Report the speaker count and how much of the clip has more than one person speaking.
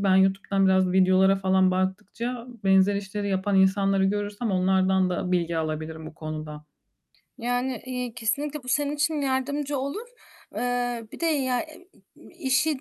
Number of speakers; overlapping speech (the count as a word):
two, no overlap